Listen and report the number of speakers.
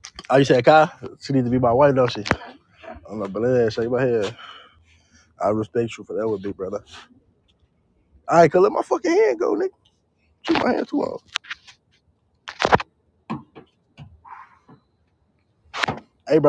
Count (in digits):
1